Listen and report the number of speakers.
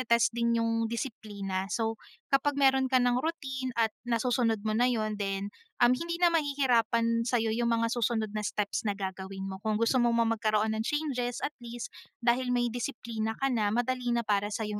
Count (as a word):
one